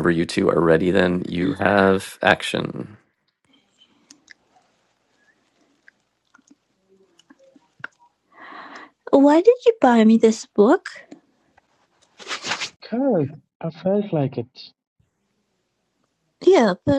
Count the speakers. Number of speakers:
3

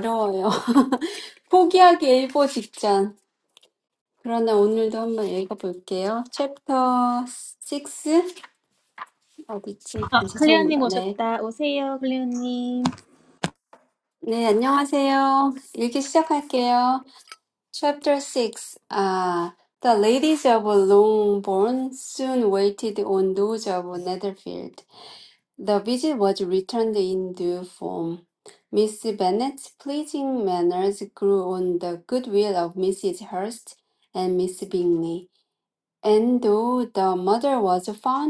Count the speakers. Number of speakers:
2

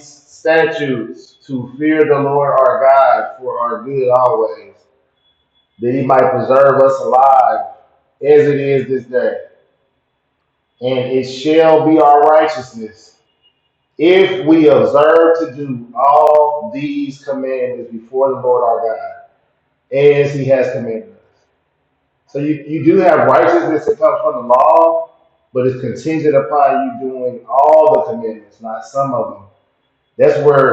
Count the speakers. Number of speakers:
1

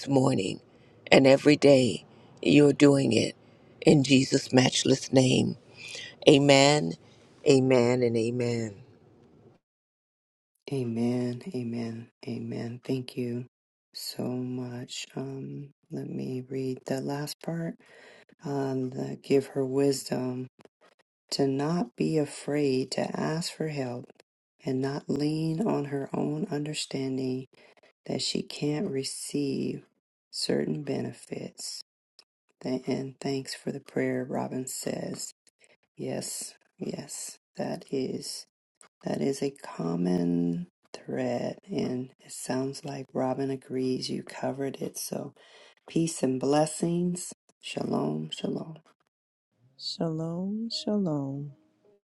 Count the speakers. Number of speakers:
3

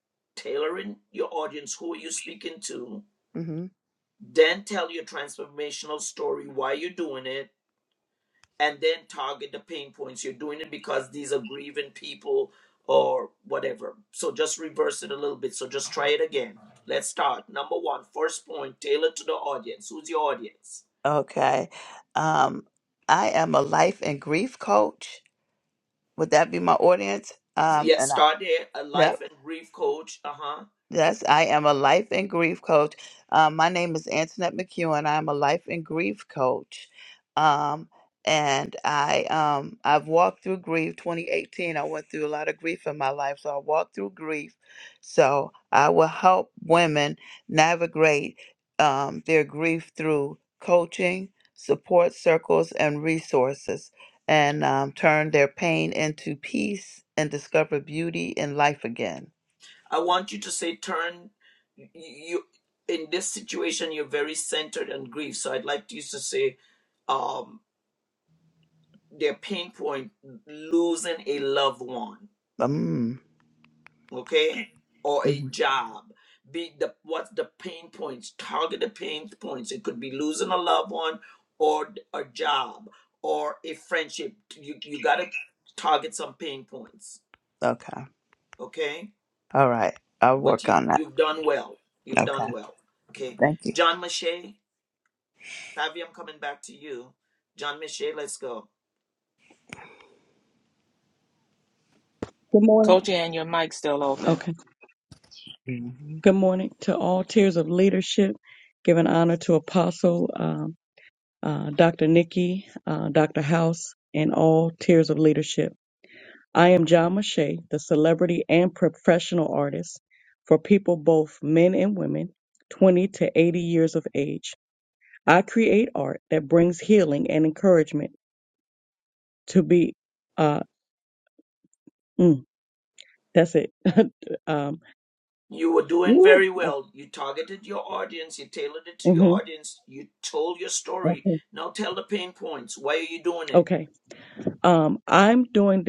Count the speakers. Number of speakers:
4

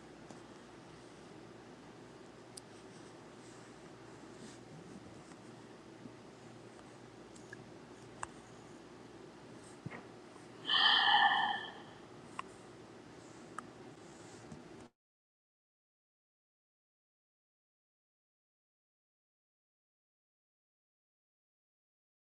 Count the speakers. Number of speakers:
0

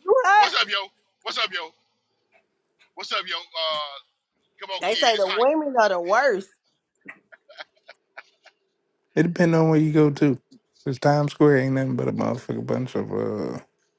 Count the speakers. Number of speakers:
3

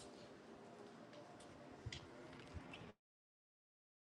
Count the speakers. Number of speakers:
0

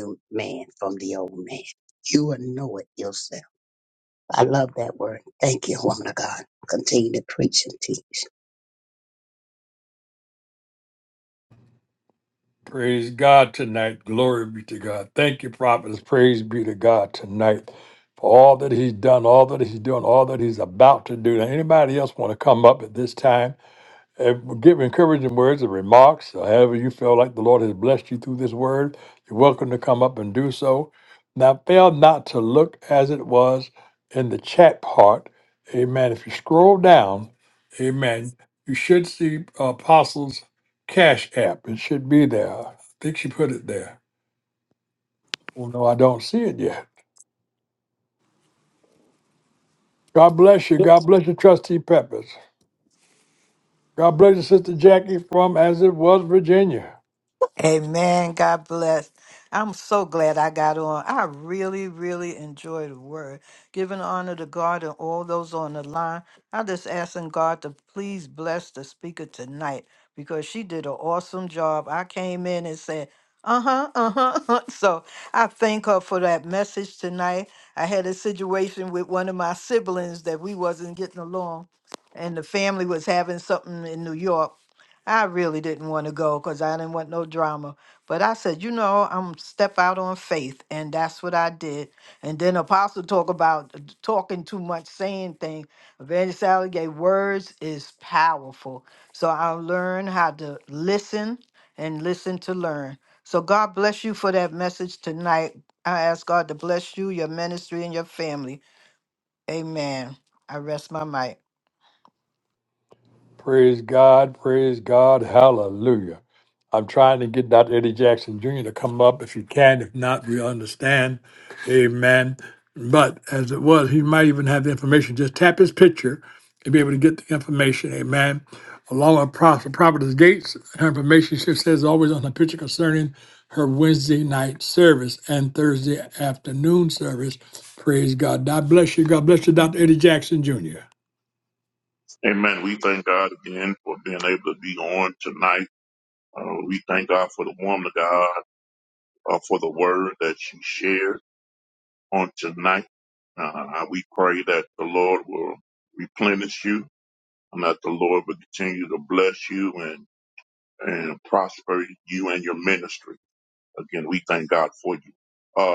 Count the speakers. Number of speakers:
4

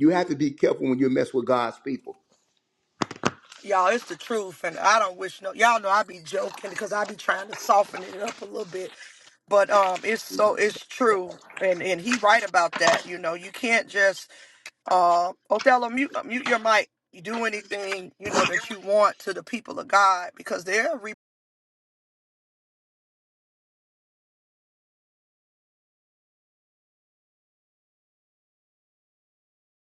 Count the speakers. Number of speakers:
2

